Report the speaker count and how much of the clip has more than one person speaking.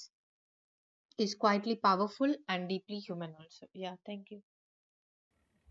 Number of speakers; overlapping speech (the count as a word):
one, no overlap